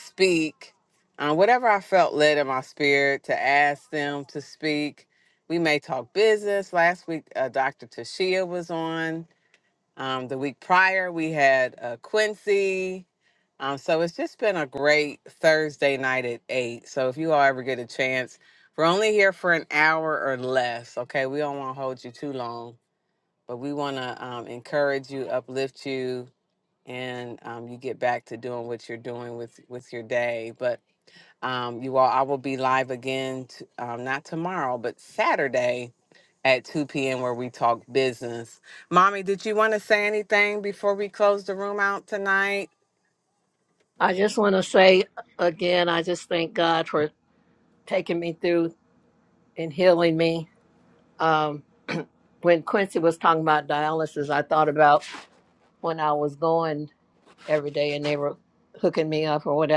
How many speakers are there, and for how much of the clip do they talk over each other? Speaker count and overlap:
two, no overlap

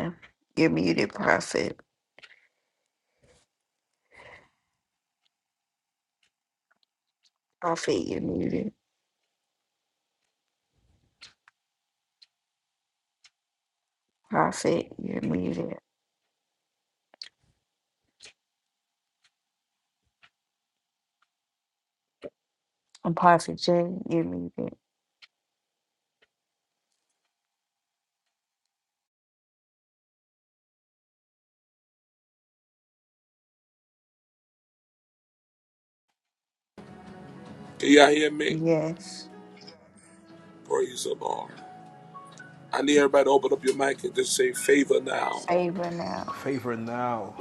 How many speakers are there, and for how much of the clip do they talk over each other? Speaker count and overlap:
three, under 1%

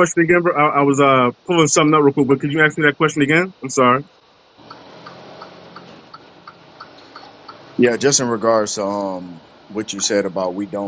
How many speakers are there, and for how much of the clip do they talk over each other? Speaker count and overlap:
two, no overlap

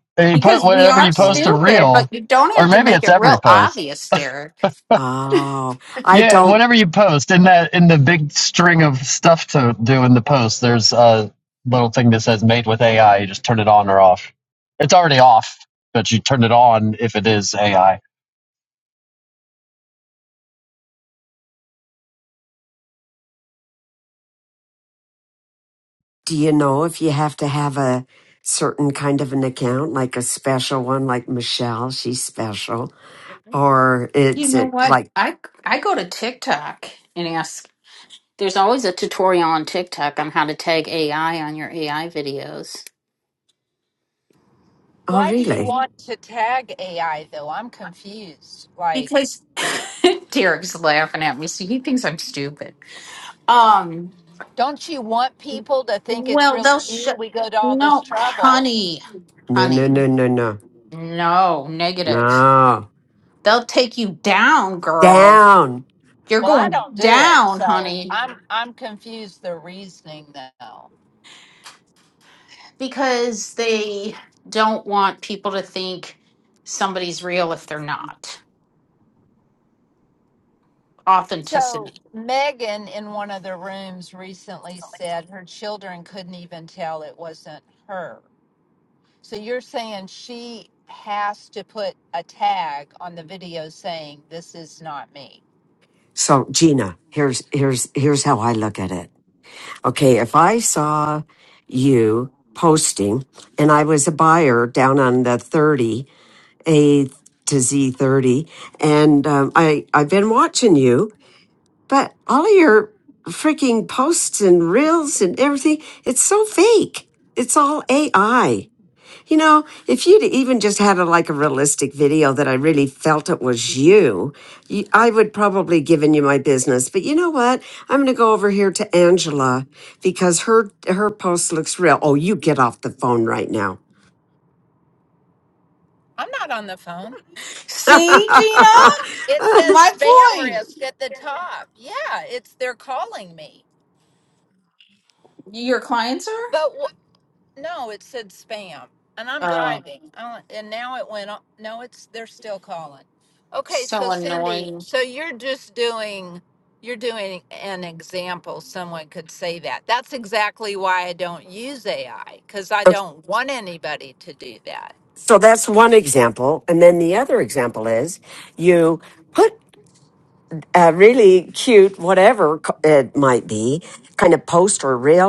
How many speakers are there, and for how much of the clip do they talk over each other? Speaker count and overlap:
four, about 7%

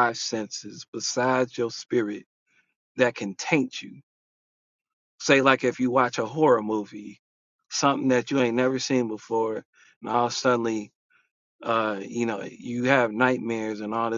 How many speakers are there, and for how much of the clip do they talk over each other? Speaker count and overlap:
one, no overlap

